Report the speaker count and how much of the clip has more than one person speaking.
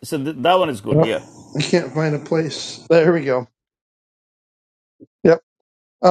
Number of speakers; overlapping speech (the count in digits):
2, about 5%